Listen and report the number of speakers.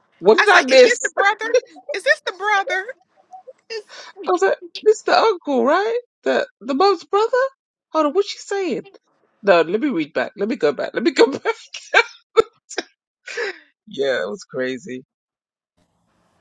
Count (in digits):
2